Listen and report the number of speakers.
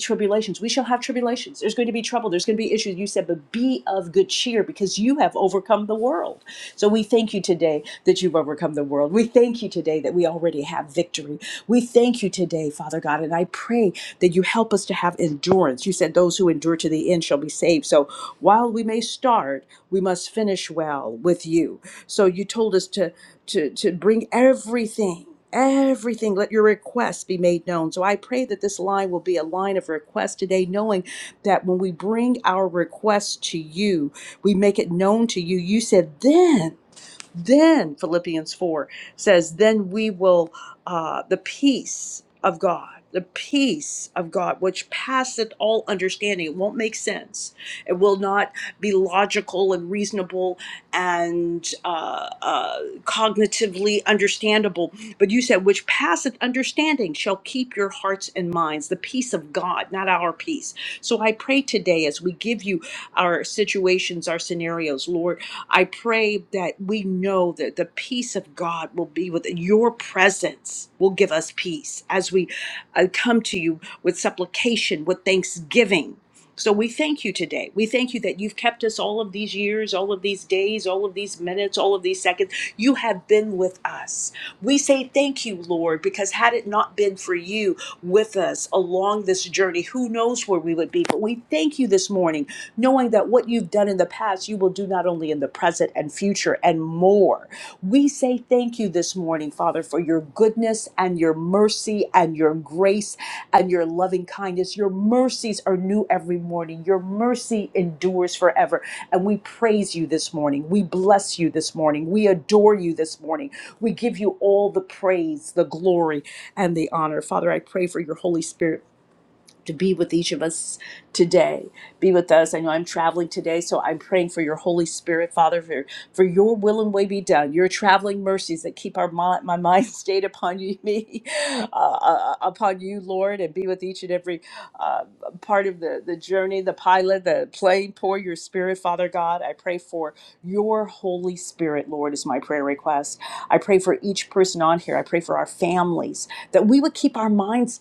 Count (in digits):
1